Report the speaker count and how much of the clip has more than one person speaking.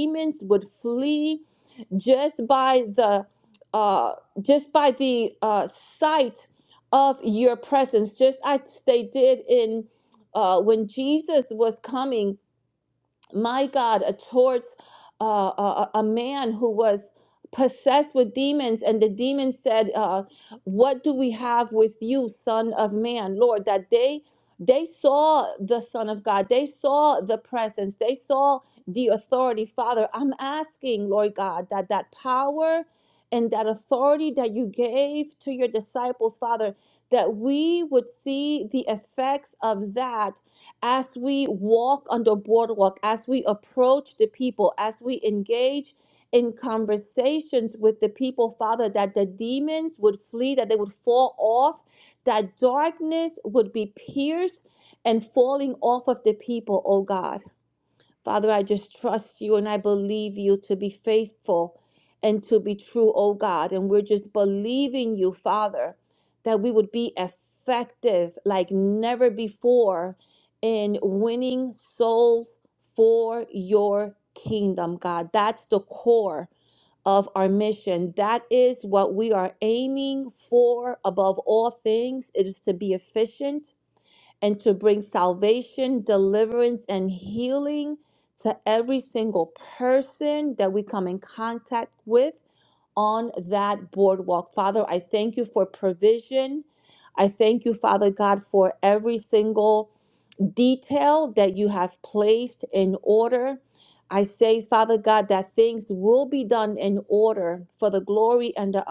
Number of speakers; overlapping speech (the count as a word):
one, no overlap